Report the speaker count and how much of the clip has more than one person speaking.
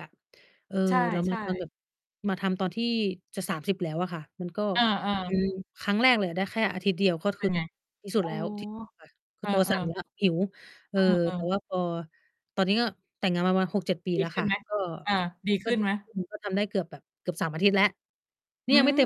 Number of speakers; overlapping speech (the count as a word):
two, about 12%